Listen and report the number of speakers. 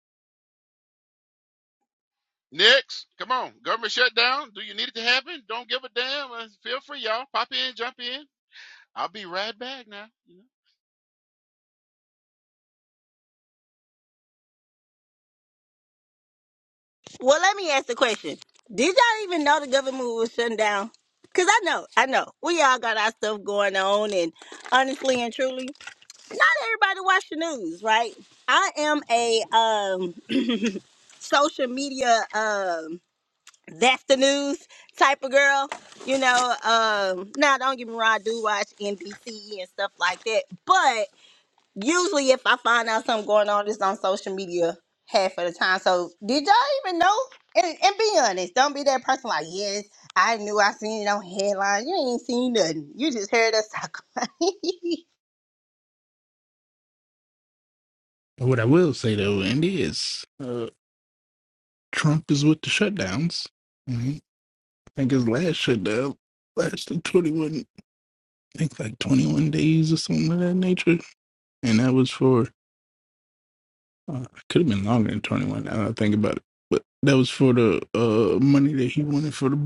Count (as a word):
three